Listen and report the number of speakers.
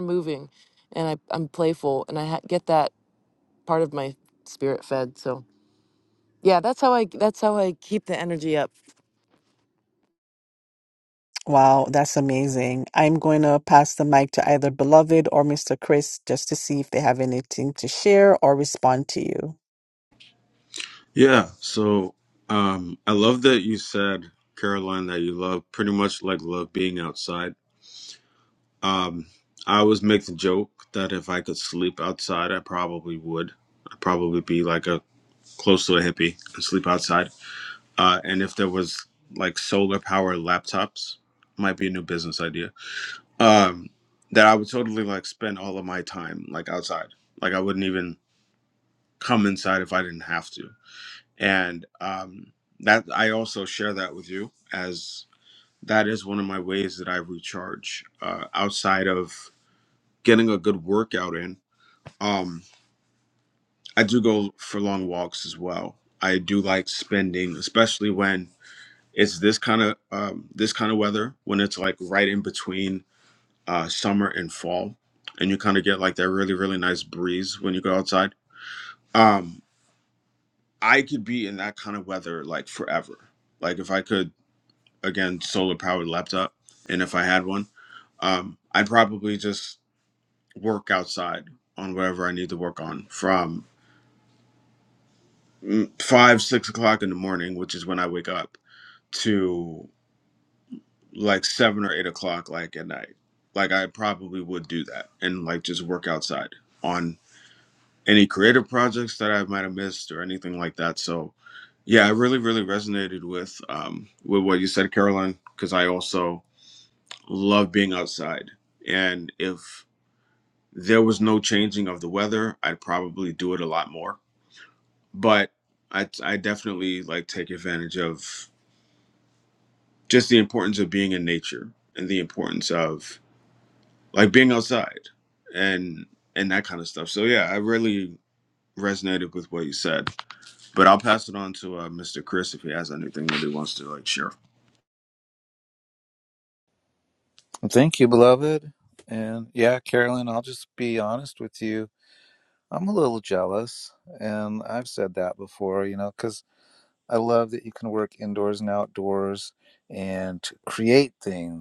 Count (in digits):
4